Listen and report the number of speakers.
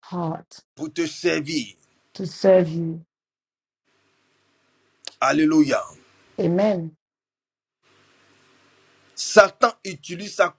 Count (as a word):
two